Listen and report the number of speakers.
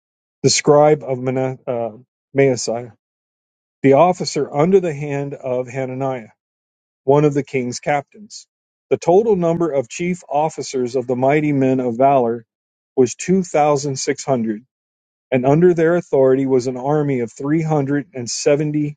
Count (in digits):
1